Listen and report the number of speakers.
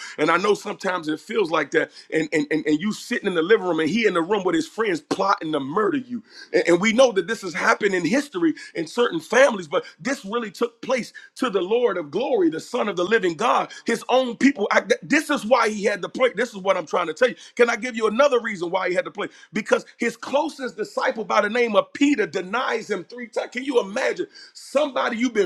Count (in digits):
1